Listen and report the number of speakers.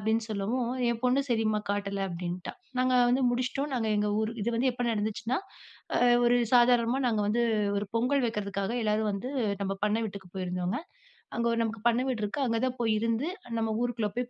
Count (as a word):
one